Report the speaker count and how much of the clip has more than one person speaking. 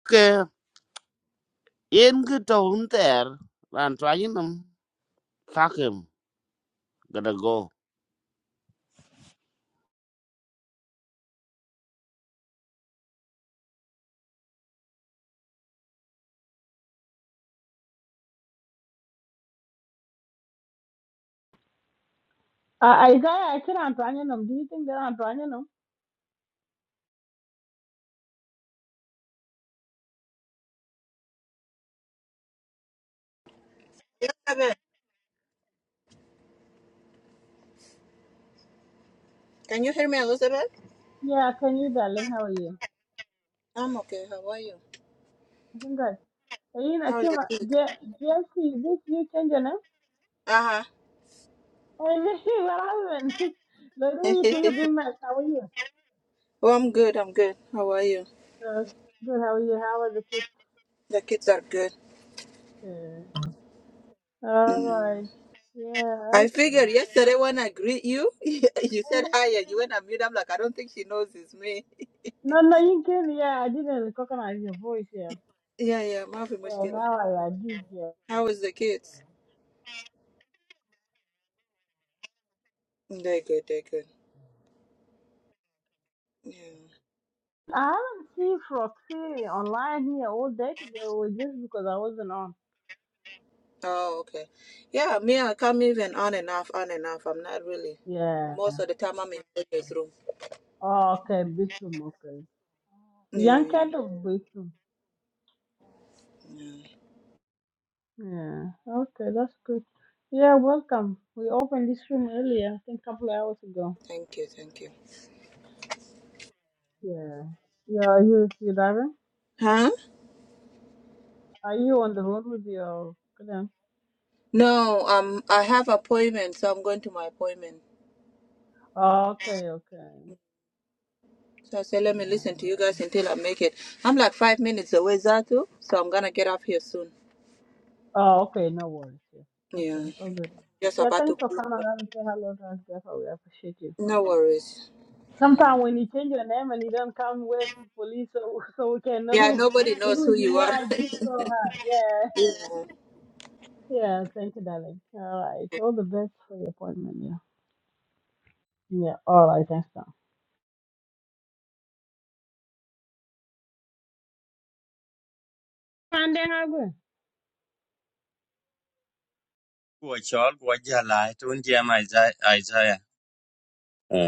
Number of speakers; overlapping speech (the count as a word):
four, about 3%